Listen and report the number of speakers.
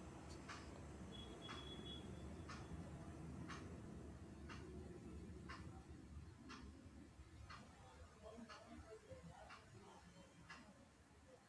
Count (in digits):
0